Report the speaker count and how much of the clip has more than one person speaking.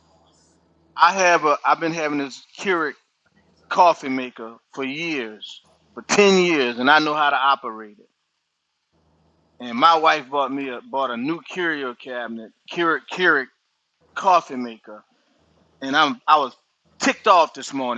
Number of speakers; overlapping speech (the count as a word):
one, no overlap